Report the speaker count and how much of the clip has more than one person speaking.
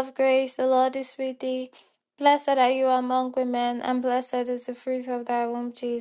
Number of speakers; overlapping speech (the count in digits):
1, no overlap